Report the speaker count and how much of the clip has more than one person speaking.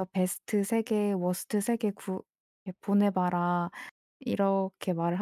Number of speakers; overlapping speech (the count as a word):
one, no overlap